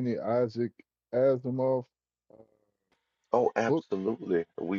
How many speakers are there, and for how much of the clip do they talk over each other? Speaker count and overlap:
two, about 3%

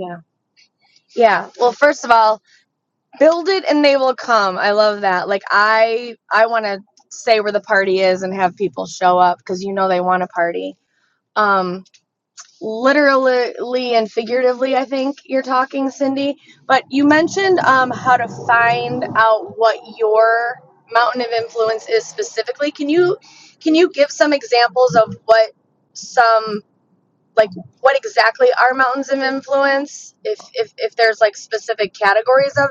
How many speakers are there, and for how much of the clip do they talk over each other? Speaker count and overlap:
one, no overlap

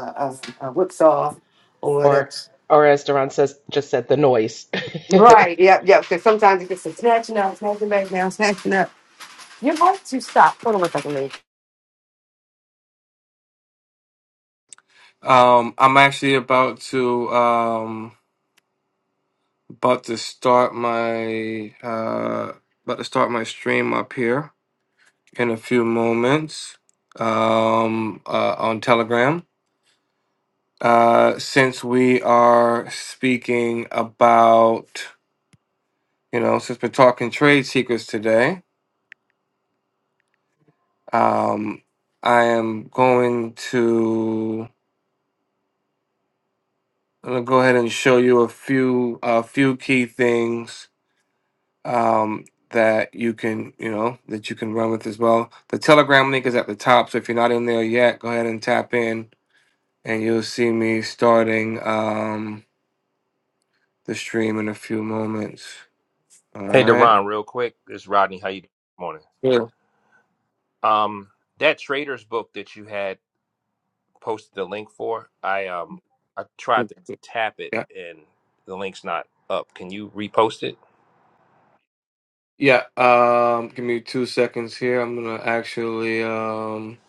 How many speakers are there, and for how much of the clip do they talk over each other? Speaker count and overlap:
four, about 1%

